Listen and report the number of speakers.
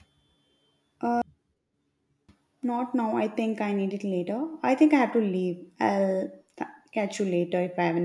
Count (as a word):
one